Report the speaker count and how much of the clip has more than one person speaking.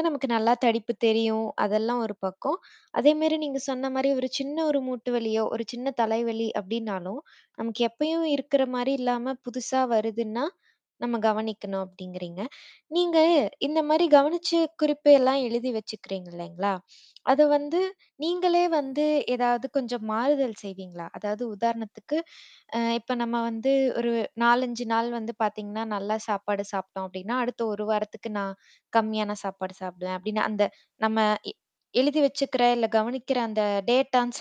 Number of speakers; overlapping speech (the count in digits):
1, no overlap